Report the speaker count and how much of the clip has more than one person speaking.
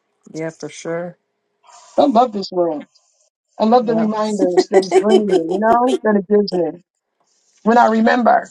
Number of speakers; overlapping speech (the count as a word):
two, about 5%